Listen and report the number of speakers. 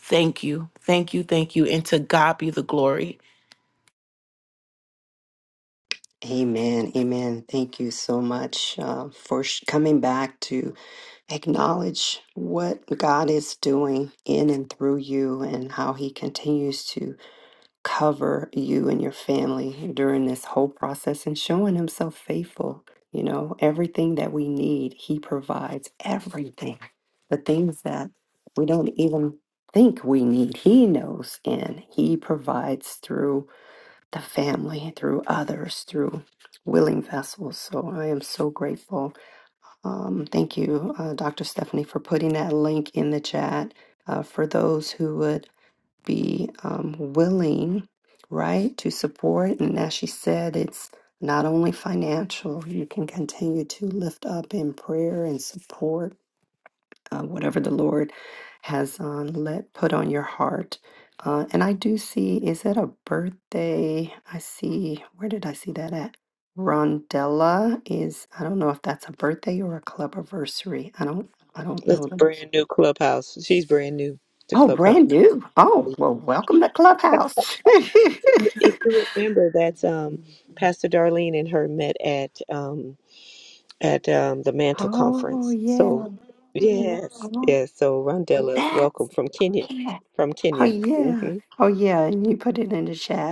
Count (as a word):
three